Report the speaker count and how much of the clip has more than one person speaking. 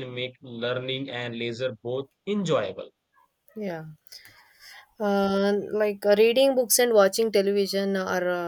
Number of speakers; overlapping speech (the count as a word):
two, no overlap